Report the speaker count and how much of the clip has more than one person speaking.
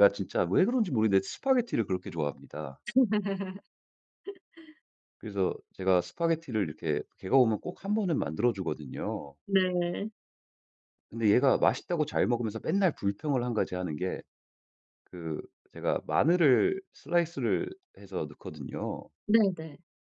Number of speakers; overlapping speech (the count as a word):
two, no overlap